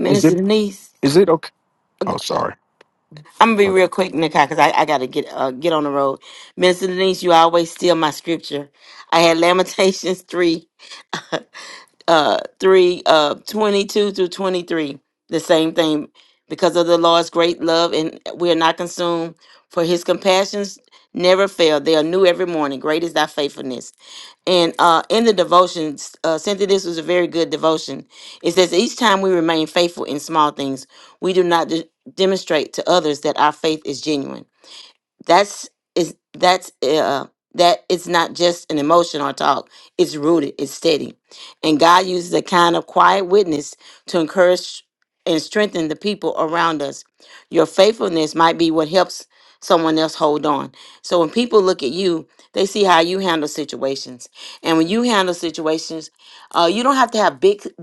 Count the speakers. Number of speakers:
2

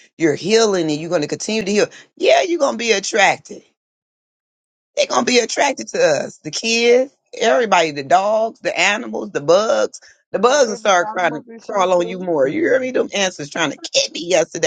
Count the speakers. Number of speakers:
1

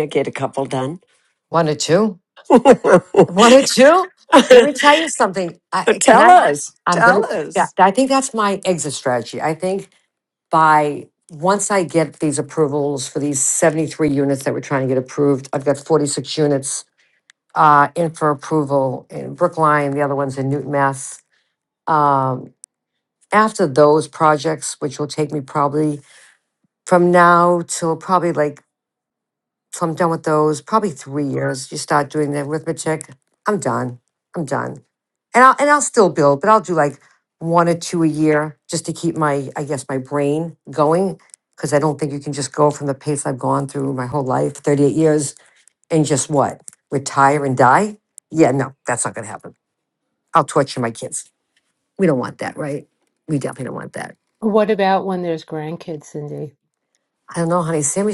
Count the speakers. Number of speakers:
3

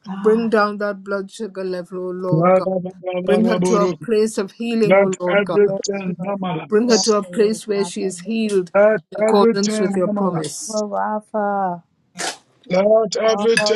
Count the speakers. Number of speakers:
3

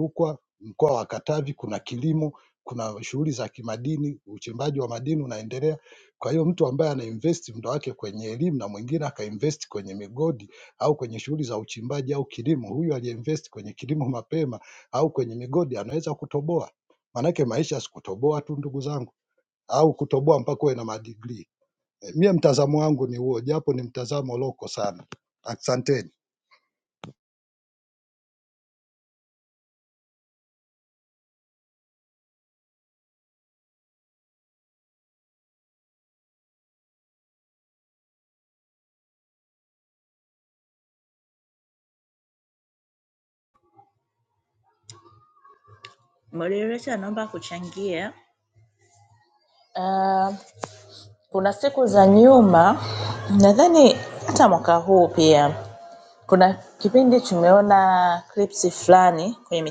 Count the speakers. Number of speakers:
2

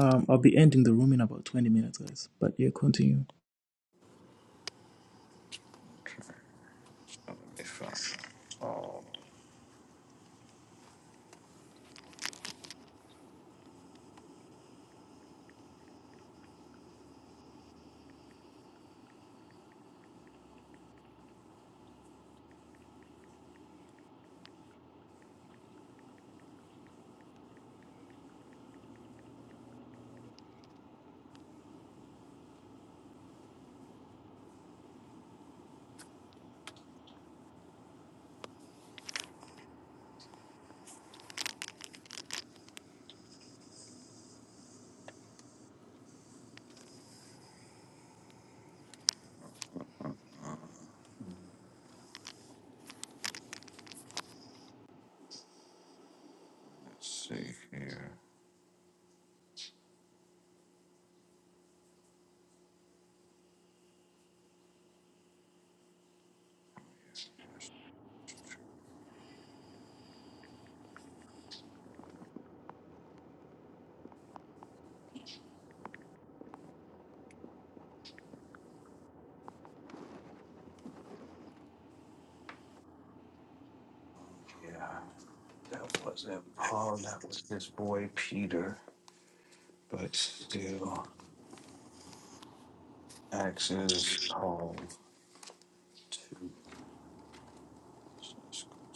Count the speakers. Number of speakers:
2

